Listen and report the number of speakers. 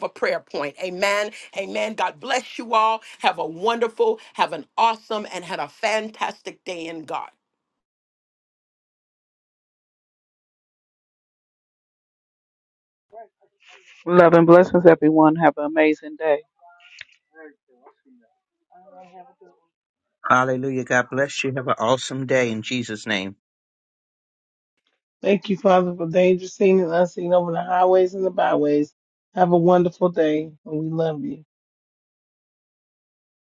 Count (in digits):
4